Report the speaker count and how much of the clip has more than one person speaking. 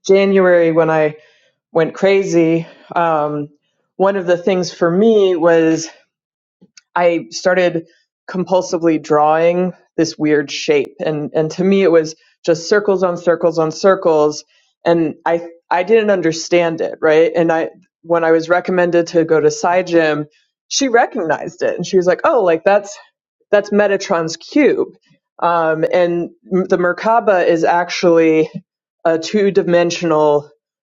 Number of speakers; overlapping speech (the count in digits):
1, no overlap